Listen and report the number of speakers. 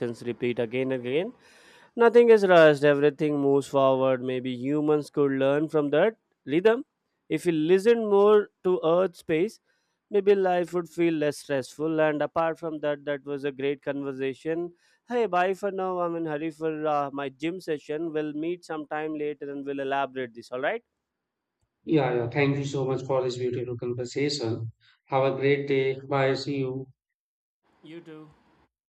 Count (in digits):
2